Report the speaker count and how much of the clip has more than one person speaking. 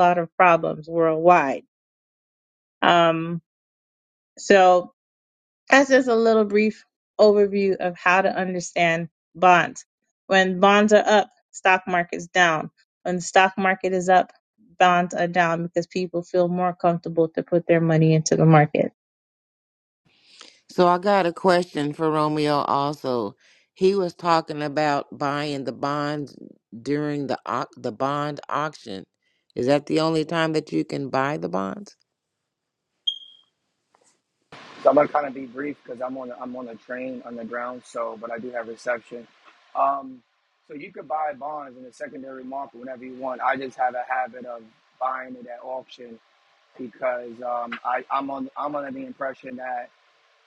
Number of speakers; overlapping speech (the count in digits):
3, no overlap